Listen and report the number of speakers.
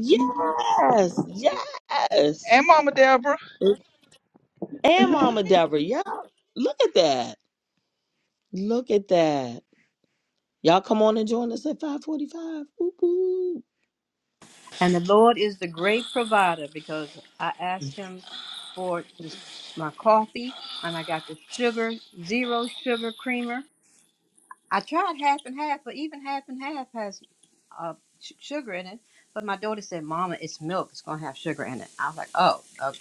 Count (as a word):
three